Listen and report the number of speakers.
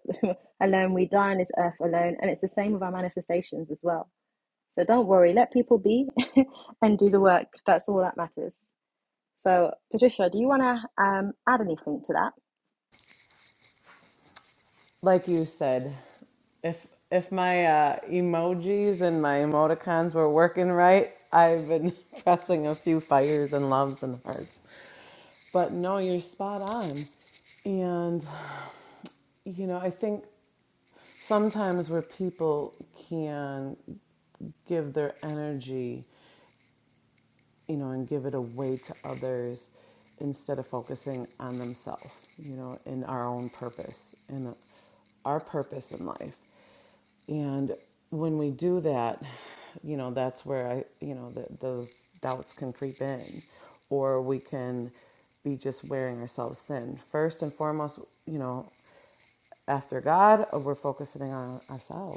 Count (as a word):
two